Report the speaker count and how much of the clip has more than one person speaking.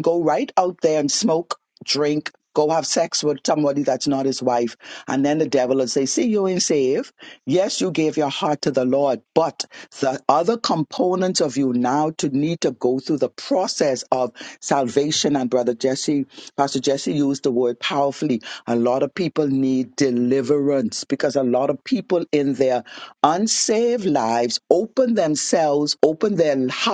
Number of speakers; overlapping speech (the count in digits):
1, no overlap